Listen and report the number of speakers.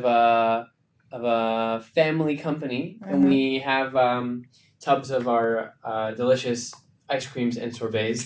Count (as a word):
one